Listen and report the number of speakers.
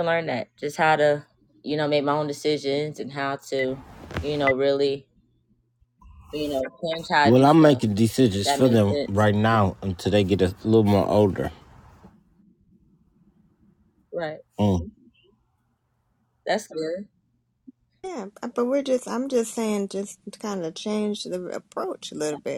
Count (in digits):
3